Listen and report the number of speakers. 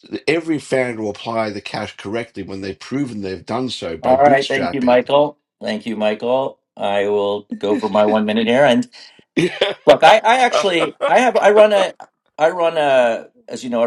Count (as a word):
two